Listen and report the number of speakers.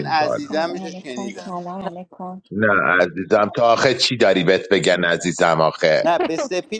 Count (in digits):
3